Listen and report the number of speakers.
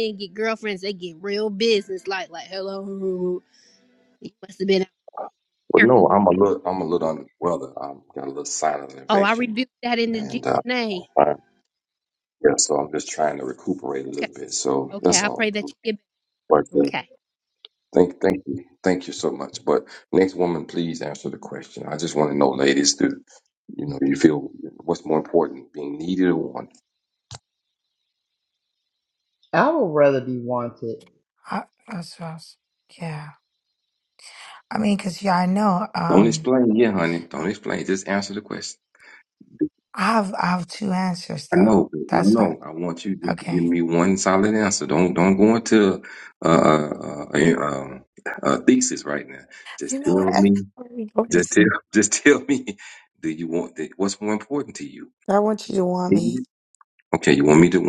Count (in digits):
4